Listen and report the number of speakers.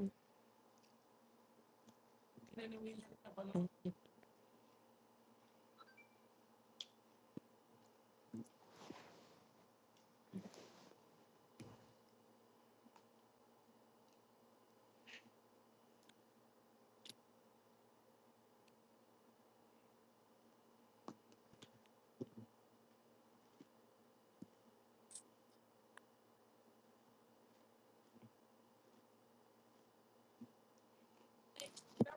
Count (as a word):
zero